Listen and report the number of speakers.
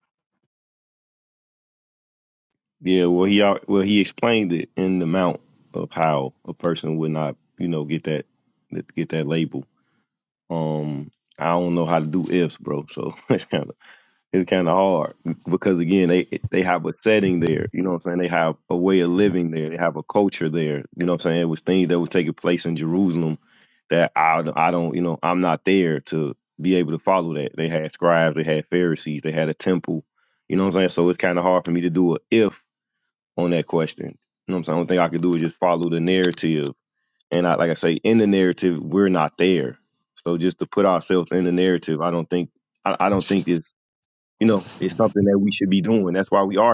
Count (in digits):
1